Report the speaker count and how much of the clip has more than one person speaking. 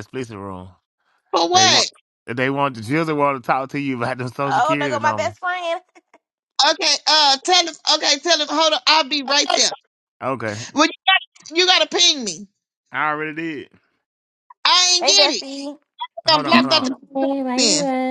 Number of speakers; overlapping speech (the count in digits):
4, about 14%